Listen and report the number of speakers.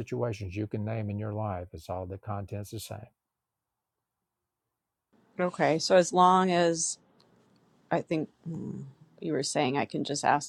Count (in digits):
2